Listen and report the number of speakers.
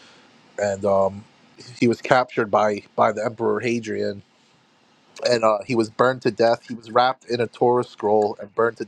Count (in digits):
1